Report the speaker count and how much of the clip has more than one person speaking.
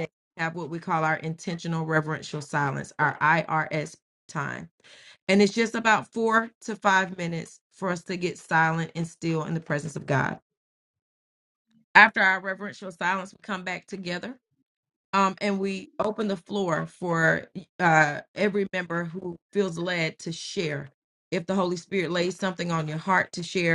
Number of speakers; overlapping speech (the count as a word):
one, no overlap